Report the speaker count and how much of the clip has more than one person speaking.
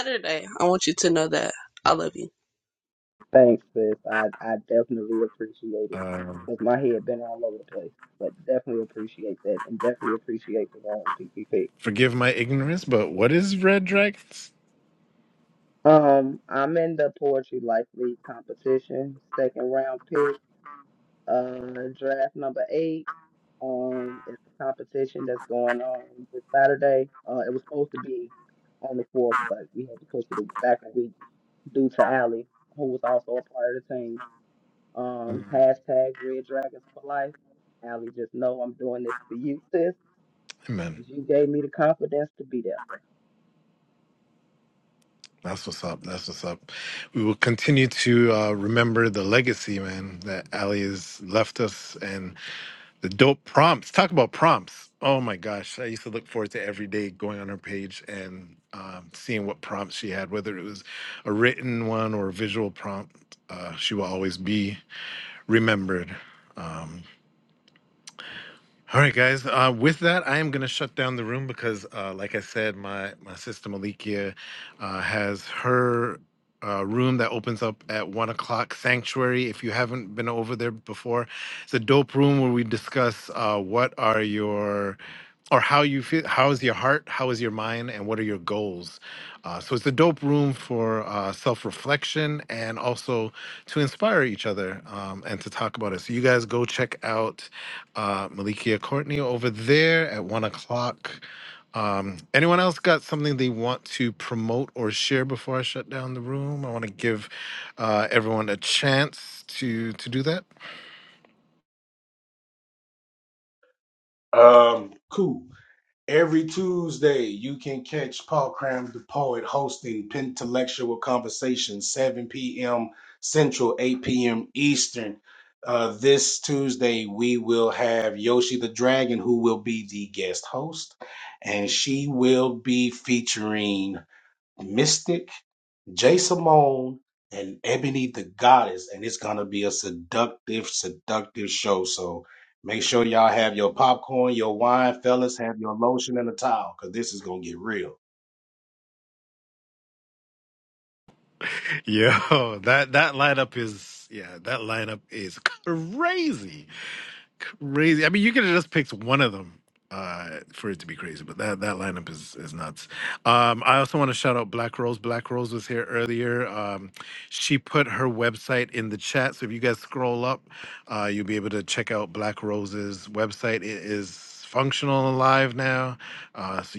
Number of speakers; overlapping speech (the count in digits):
4, under 1%